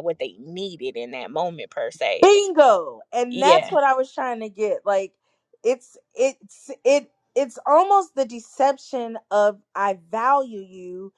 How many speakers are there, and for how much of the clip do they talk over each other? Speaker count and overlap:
2, about 4%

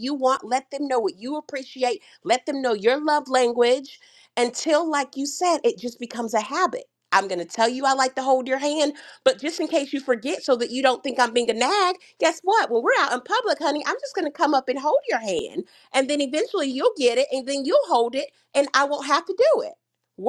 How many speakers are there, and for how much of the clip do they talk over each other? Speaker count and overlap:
1, no overlap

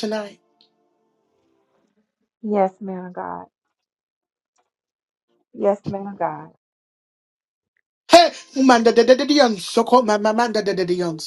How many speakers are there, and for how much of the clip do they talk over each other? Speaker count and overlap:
2, no overlap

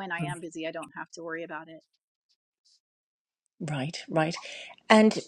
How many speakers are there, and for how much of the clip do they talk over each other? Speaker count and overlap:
2, about 2%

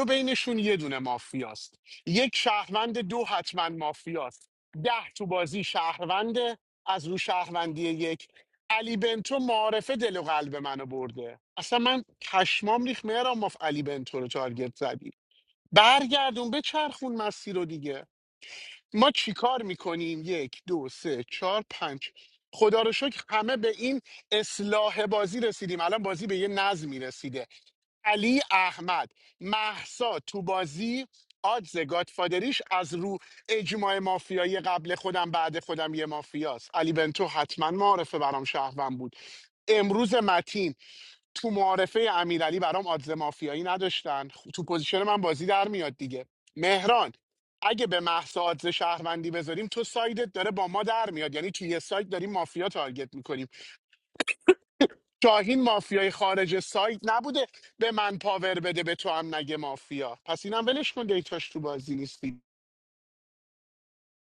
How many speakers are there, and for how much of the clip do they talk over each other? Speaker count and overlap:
1, no overlap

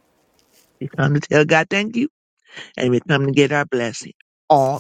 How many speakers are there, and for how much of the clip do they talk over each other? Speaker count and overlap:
1, no overlap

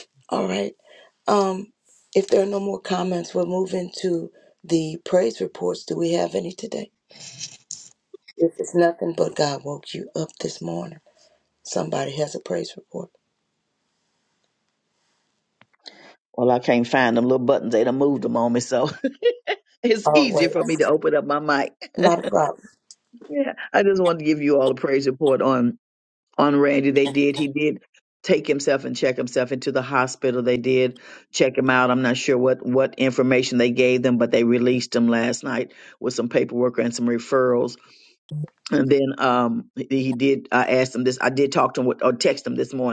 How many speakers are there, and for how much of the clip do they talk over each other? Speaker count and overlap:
2, about 1%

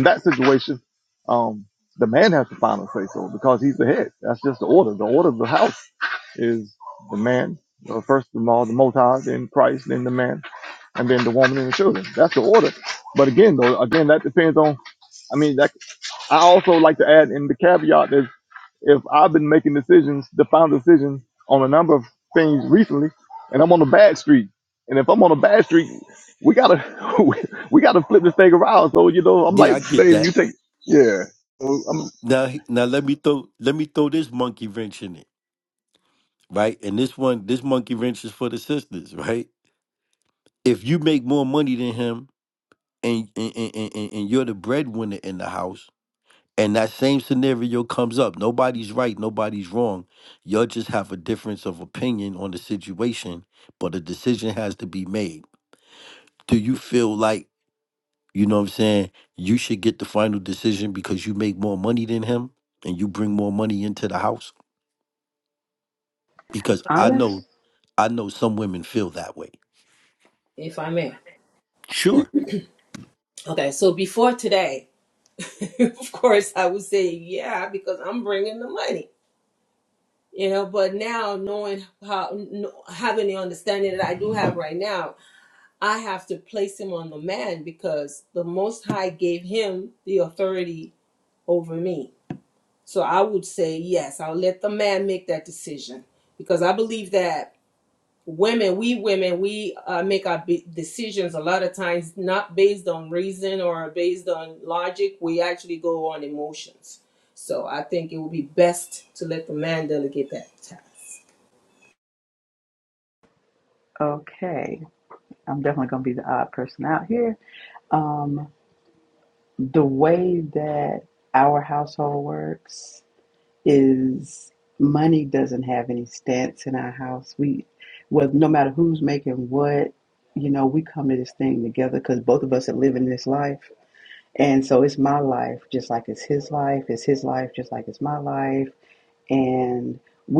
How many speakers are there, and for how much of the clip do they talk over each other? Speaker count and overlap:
4, about 1%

